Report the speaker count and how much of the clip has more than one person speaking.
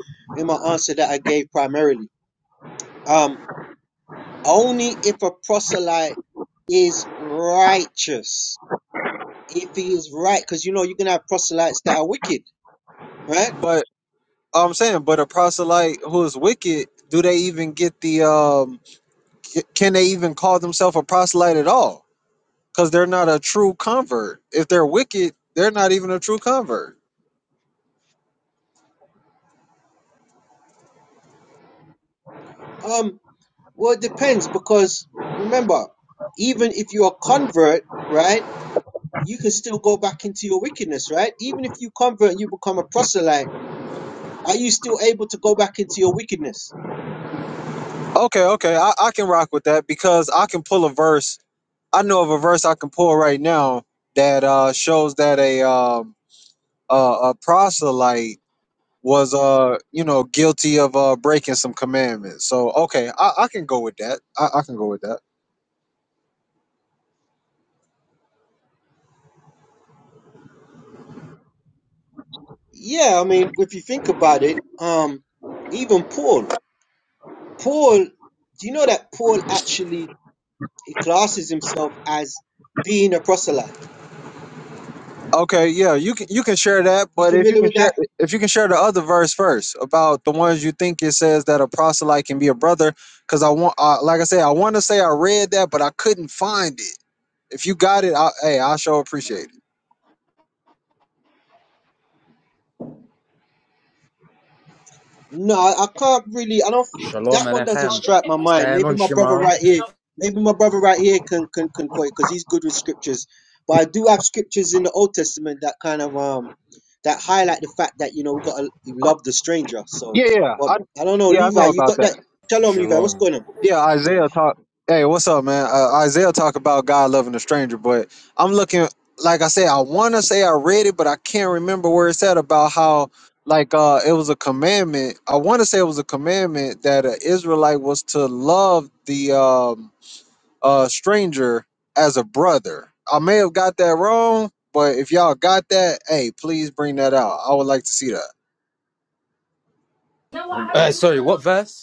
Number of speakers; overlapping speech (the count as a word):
three, about 3%